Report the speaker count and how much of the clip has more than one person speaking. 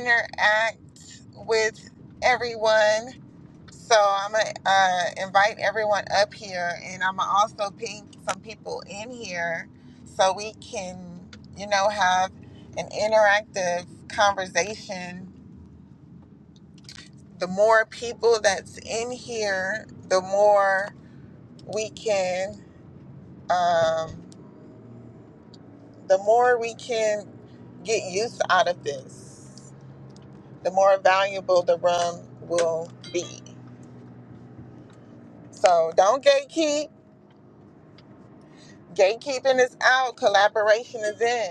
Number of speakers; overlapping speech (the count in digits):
1, no overlap